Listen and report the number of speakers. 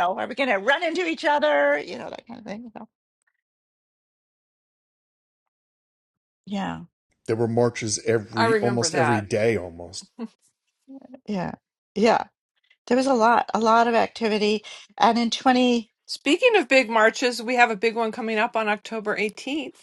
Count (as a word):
three